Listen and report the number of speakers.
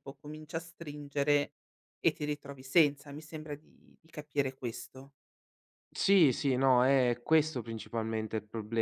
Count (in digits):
2